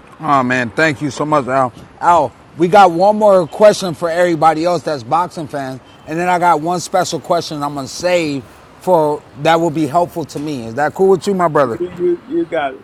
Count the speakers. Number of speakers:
two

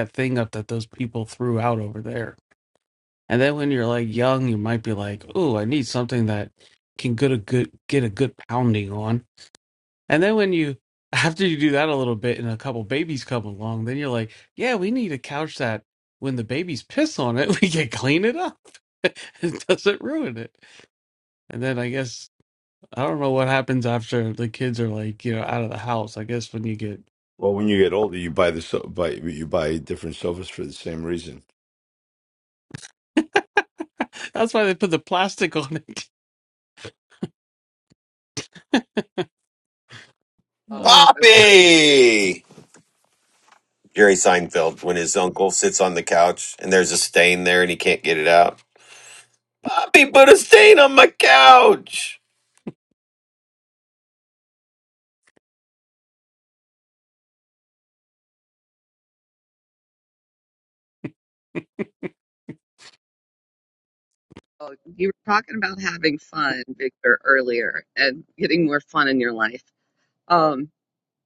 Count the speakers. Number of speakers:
four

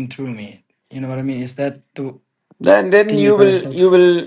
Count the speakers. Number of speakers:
two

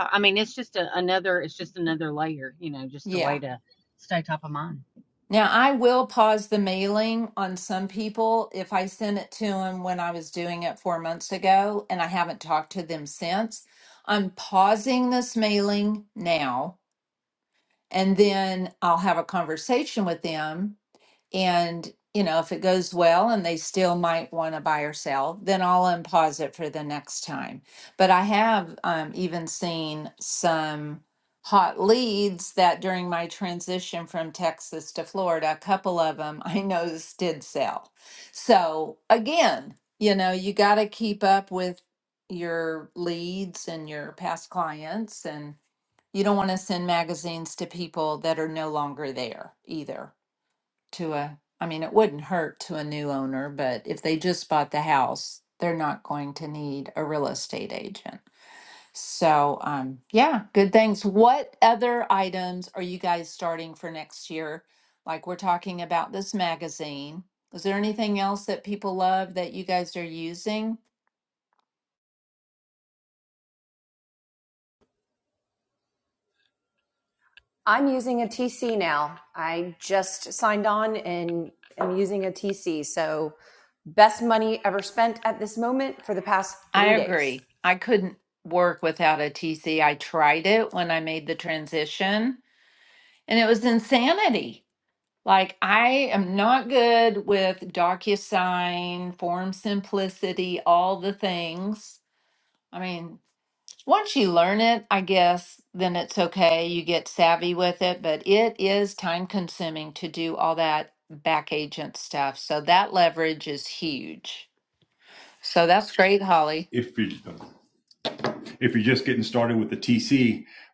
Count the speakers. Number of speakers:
four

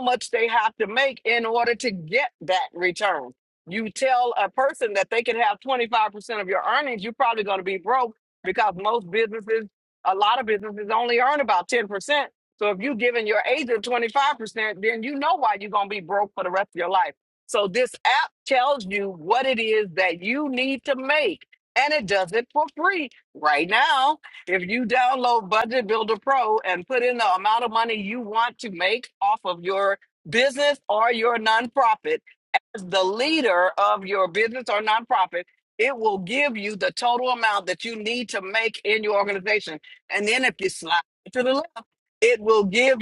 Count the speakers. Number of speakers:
one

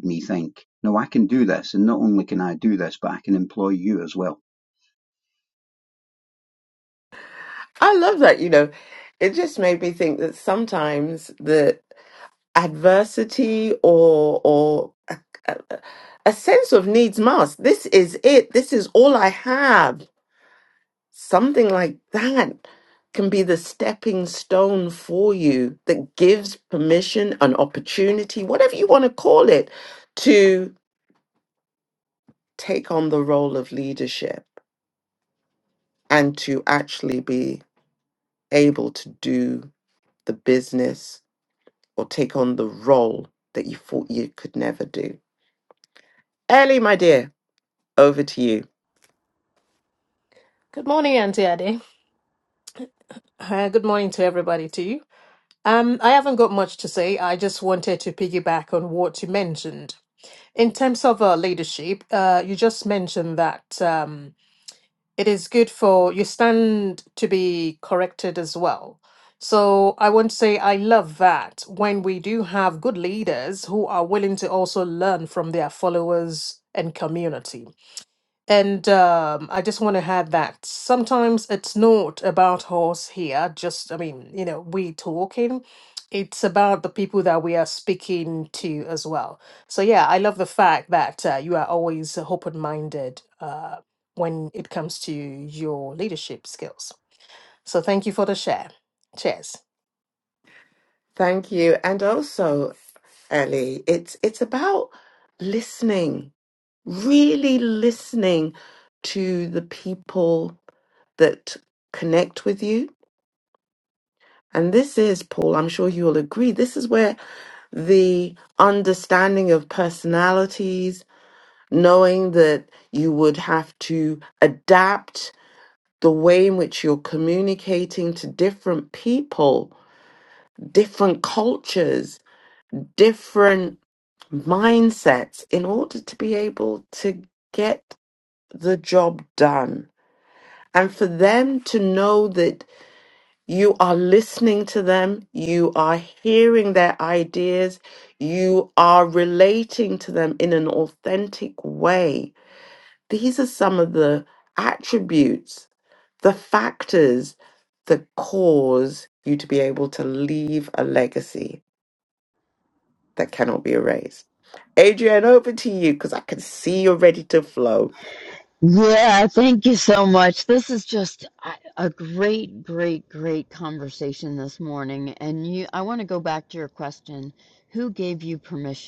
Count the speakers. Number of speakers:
four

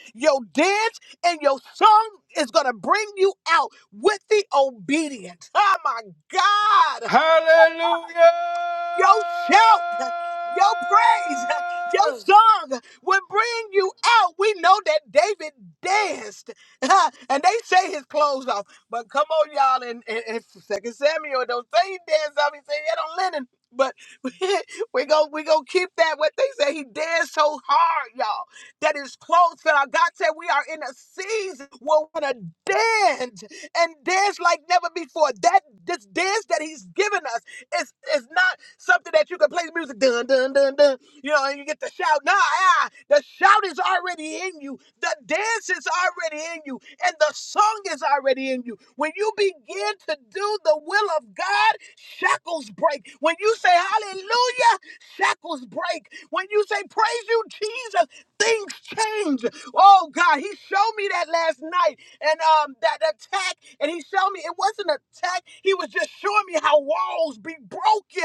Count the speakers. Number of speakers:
two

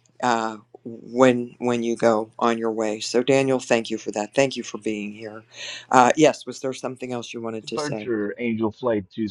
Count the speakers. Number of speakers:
two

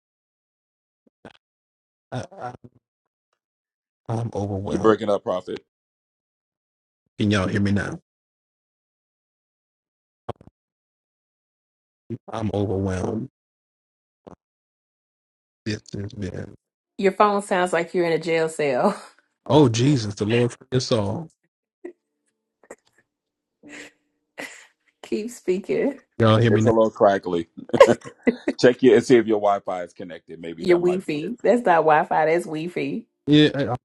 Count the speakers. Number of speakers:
three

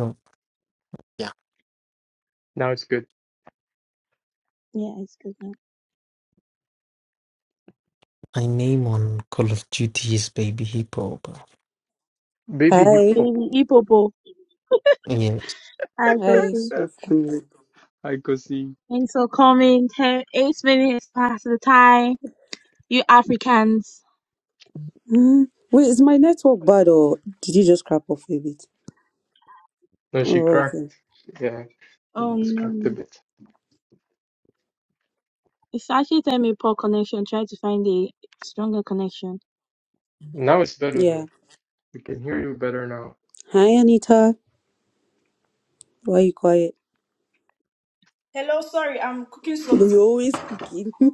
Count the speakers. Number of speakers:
five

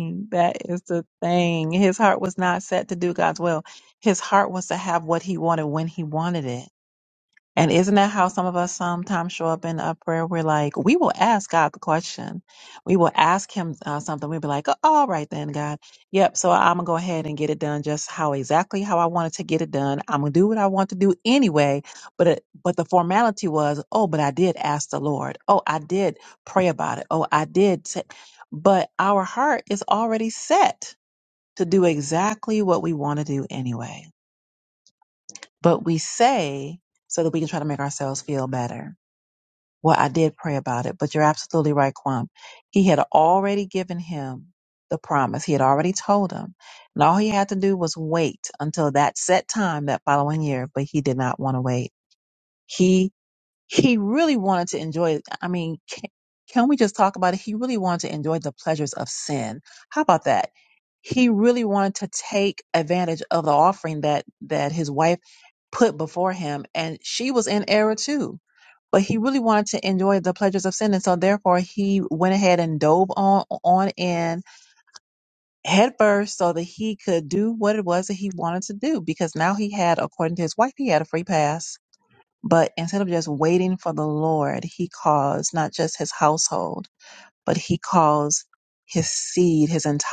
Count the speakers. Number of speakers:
one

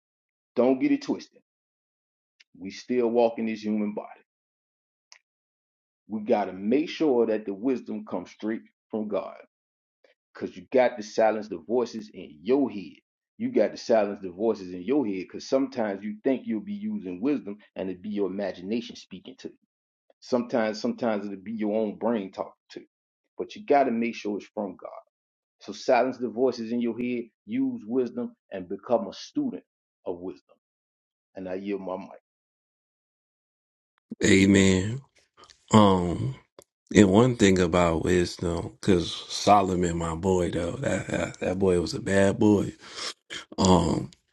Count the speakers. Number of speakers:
two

